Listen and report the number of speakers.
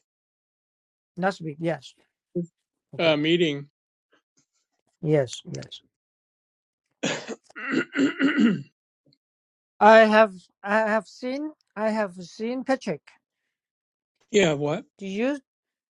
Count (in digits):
2